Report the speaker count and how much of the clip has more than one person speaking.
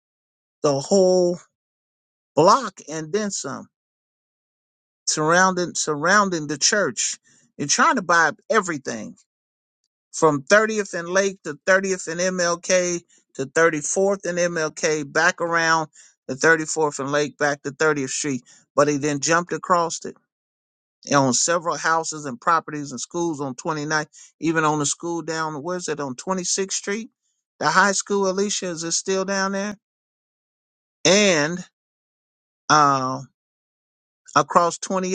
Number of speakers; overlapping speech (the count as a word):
one, no overlap